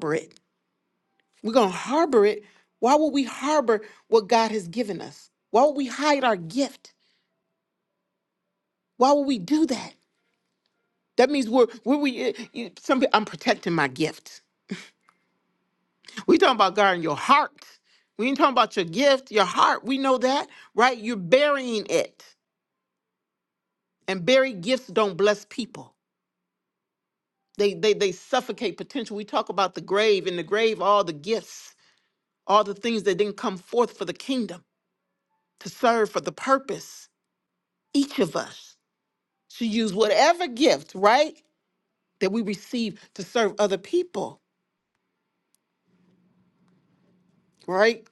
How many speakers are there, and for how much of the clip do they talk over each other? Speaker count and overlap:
1, no overlap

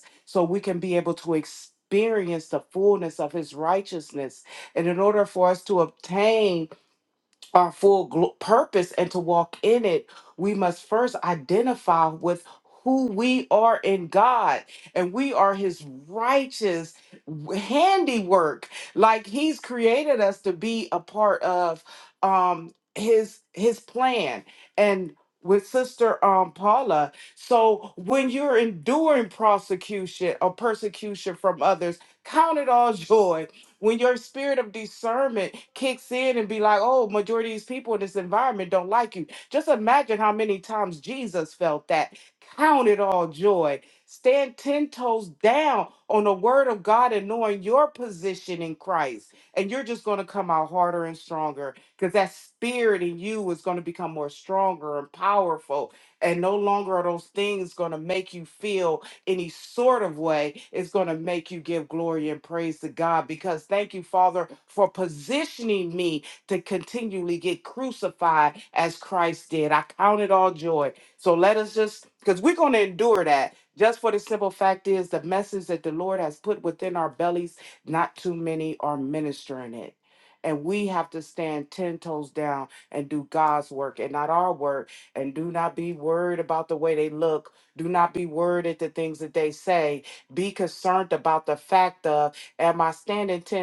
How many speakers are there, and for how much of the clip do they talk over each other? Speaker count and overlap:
1, no overlap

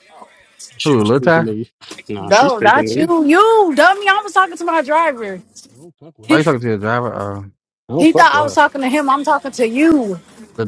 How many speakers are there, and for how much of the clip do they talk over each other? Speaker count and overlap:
3, about 22%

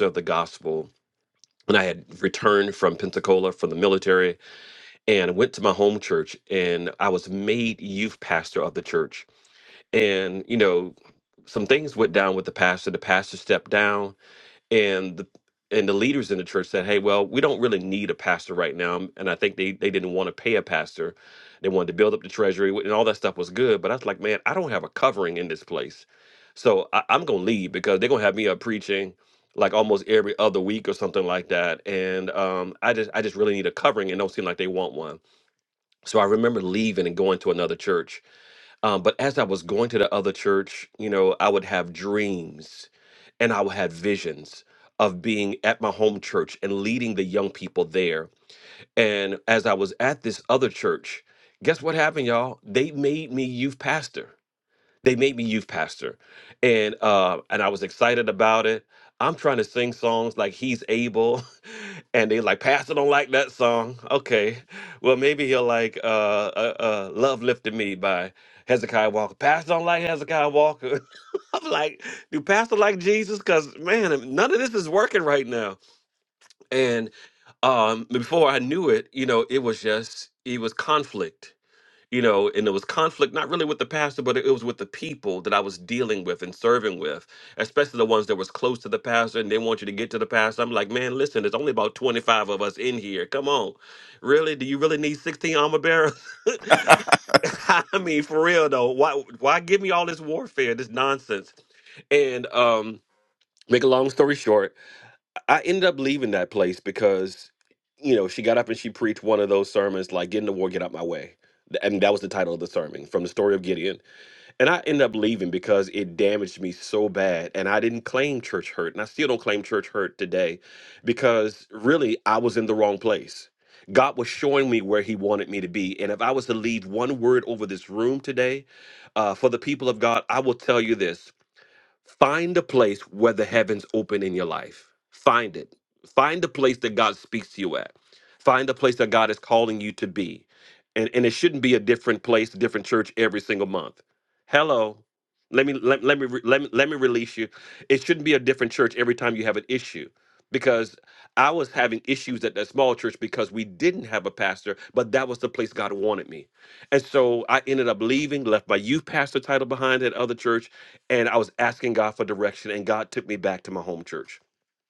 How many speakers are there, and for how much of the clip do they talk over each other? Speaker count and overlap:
1, no overlap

